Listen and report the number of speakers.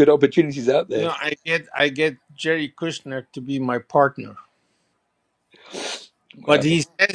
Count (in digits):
2